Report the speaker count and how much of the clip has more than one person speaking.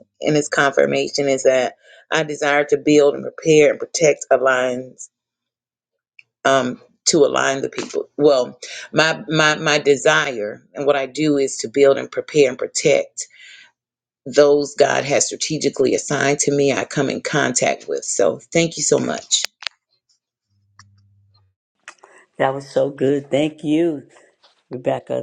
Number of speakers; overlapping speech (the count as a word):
two, no overlap